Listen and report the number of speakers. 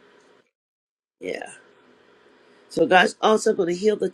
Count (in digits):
1